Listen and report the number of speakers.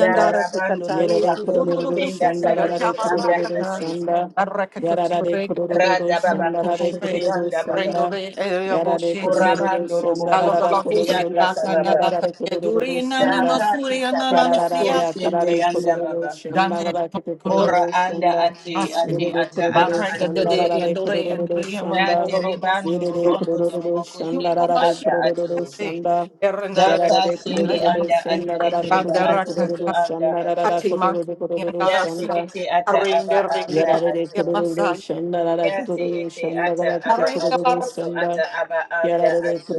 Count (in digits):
3